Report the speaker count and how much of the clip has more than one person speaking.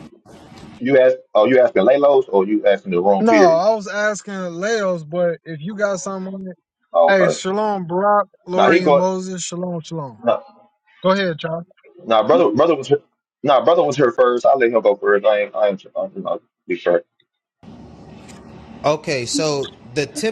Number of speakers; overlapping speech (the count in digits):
3, about 6%